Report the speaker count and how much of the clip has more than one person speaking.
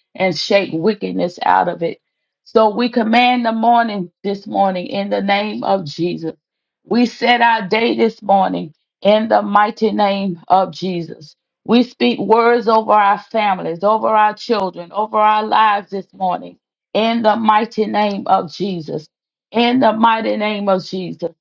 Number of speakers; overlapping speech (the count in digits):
1, no overlap